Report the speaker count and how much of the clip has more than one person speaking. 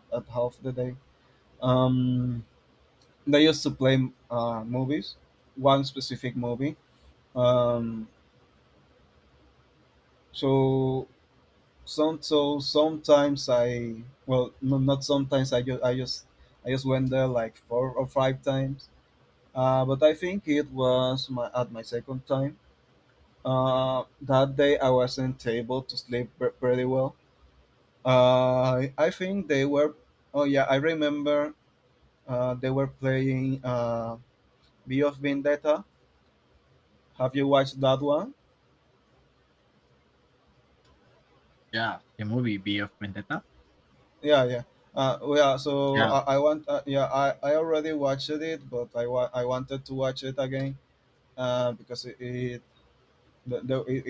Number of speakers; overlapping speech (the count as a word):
two, under 1%